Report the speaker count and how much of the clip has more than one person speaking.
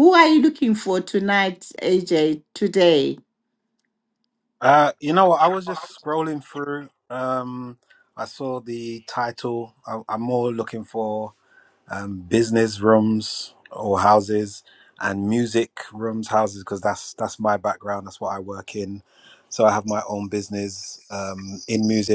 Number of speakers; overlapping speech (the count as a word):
two, no overlap